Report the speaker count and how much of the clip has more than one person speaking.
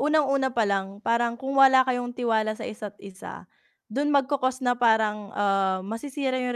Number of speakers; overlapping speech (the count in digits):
1, no overlap